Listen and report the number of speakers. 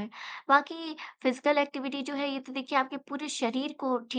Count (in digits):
1